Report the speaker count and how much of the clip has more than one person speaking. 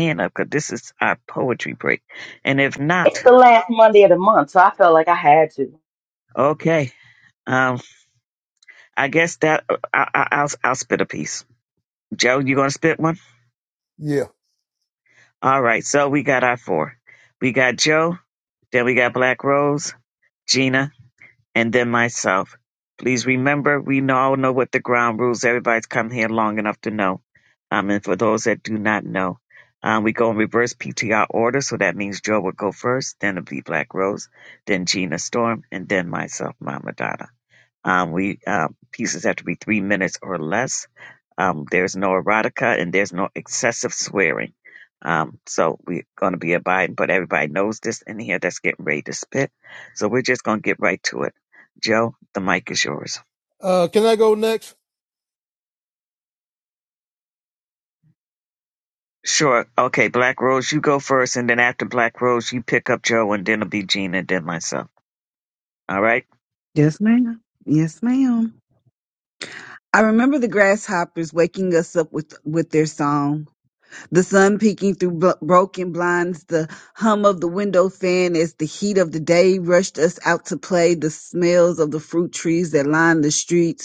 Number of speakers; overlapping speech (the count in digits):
4, under 1%